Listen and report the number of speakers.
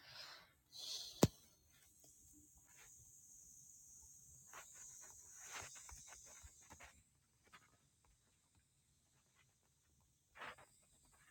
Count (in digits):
0